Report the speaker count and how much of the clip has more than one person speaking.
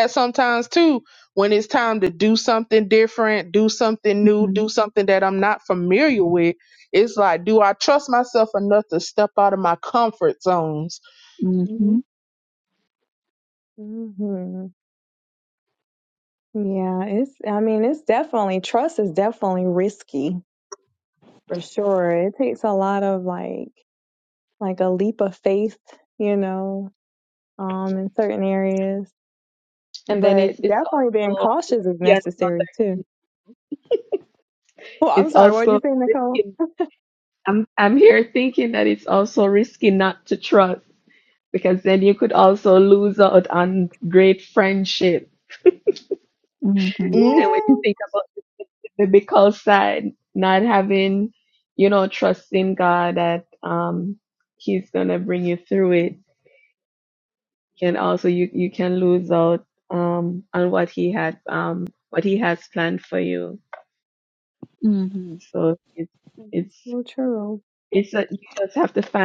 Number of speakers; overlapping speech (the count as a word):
four, about 6%